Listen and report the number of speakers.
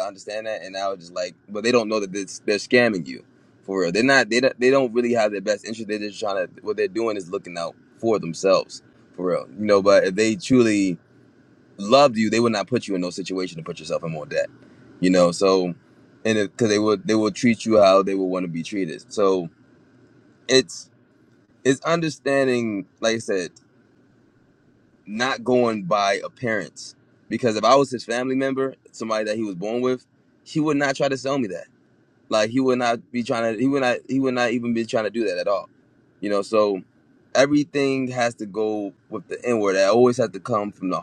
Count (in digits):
1